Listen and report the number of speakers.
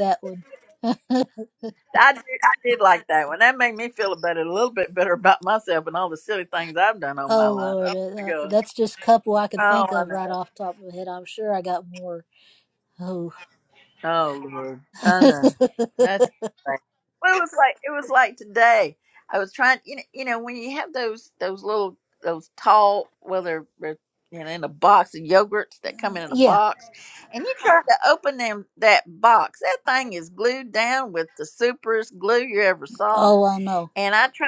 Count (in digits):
2